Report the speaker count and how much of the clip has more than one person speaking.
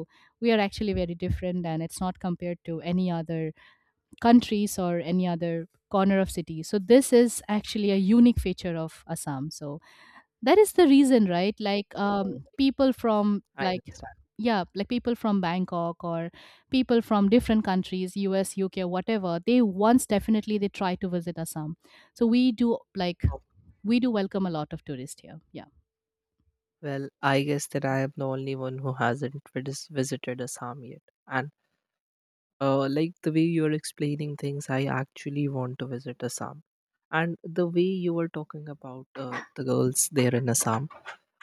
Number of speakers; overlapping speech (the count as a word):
two, about 2%